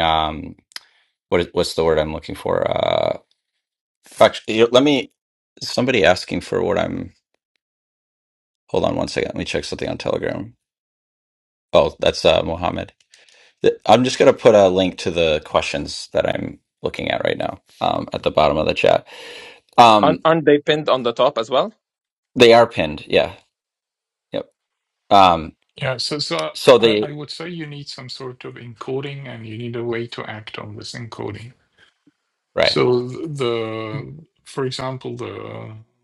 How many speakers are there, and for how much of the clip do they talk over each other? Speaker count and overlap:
3, about 2%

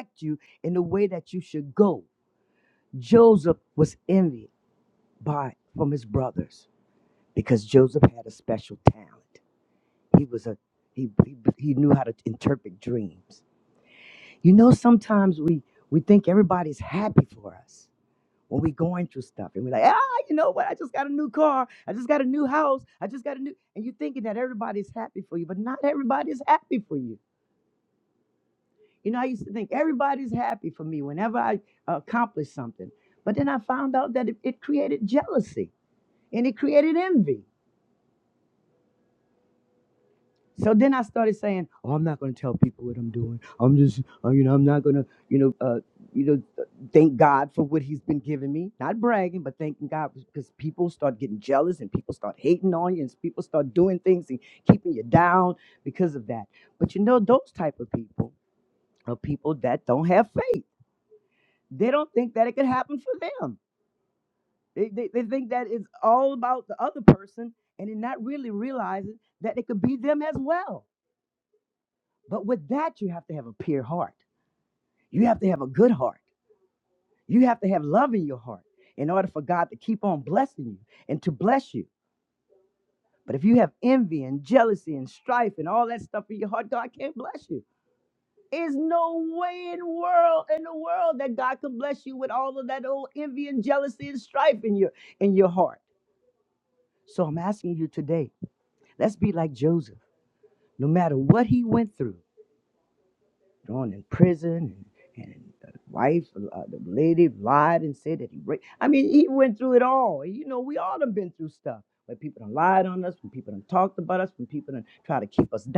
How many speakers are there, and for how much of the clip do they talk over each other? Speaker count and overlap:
1, no overlap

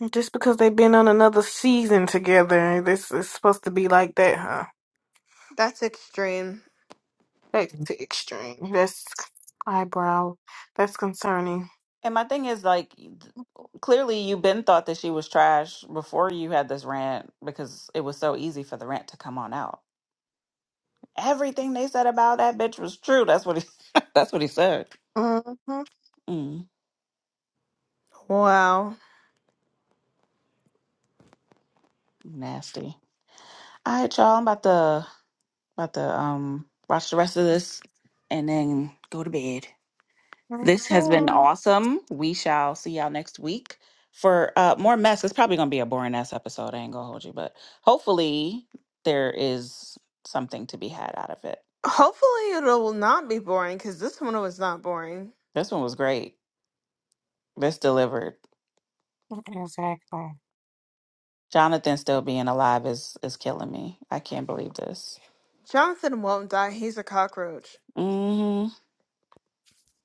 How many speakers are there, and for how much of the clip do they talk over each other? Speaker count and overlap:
3, about 1%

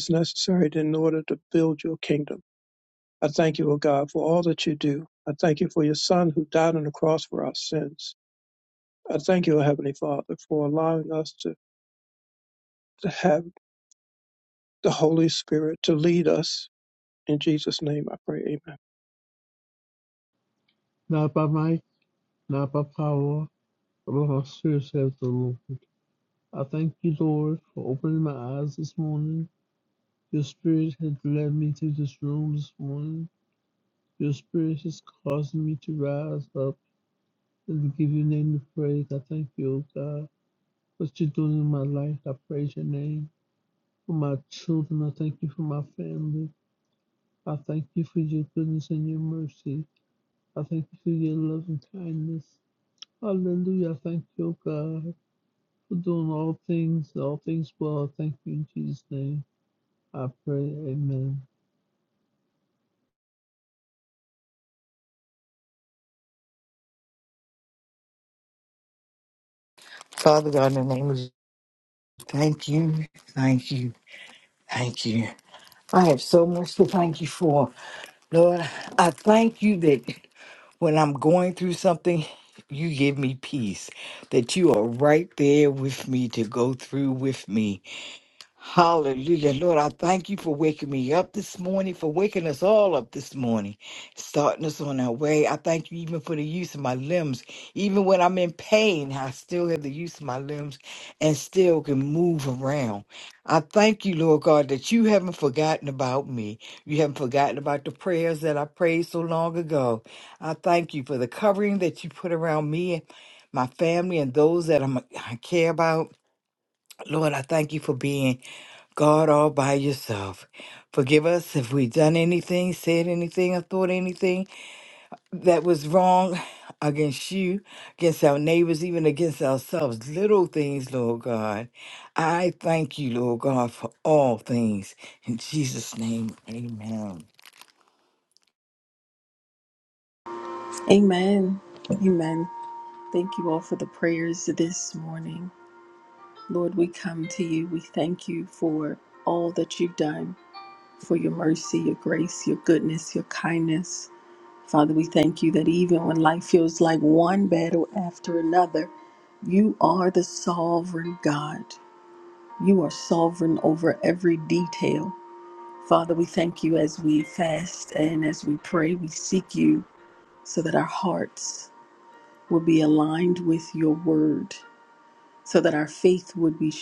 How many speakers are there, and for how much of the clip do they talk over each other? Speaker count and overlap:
4, no overlap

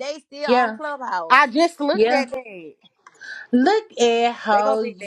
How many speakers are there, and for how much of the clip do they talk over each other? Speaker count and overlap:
3, about 24%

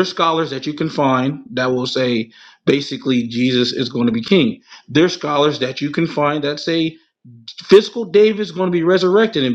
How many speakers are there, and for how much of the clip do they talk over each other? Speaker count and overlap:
1, no overlap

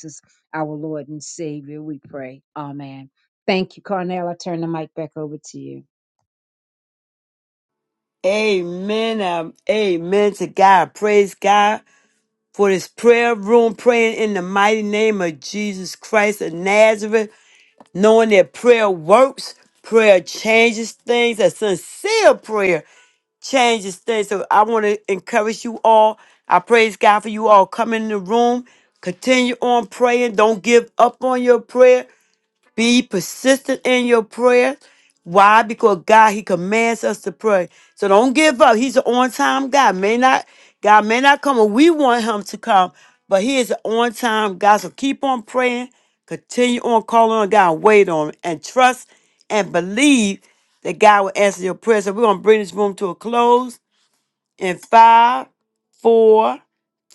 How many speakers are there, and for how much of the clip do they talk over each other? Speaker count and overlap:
2, no overlap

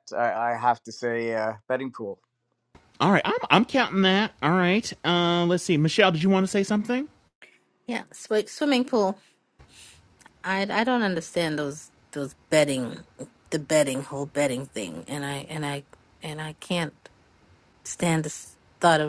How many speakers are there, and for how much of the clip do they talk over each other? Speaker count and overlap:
3, no overlap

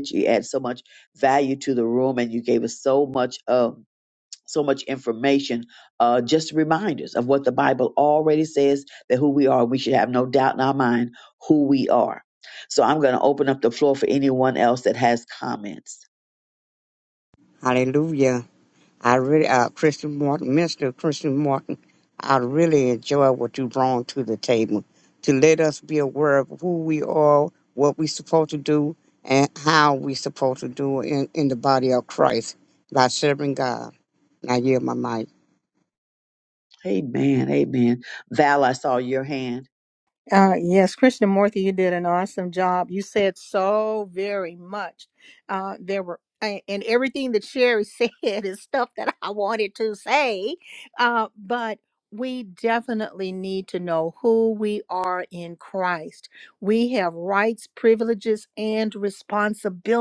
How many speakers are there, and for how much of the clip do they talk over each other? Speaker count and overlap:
3, no overlap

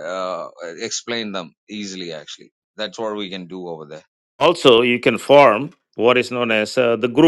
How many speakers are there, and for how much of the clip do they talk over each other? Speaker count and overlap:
2, no overlap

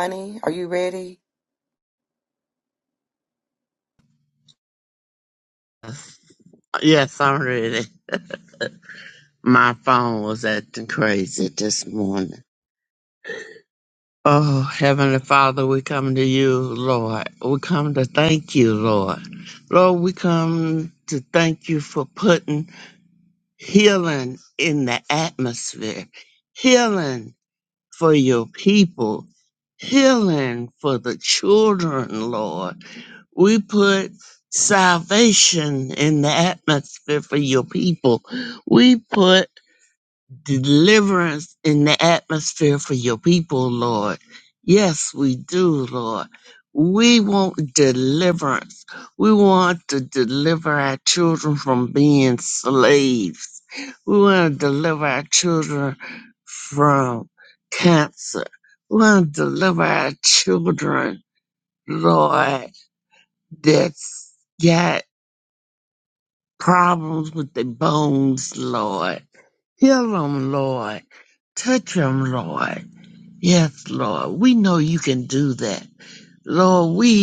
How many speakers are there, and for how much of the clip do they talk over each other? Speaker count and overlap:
2, no overlap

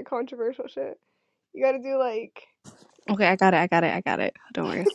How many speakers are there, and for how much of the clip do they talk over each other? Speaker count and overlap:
2, no overlap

